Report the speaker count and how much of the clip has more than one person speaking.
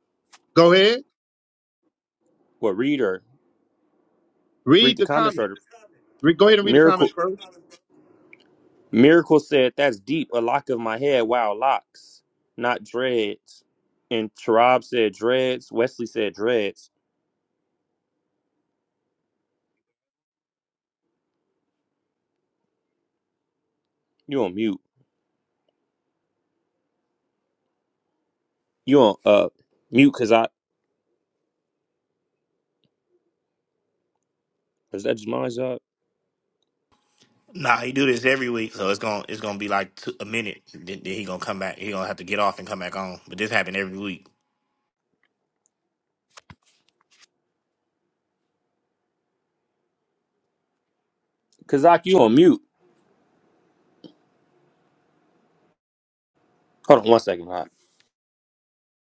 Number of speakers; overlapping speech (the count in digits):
3, about 2%